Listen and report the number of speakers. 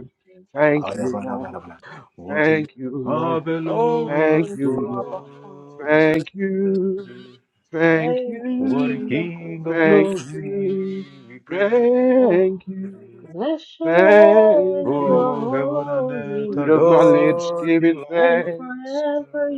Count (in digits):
3